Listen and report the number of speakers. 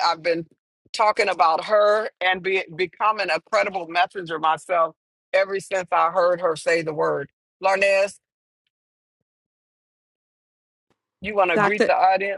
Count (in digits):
1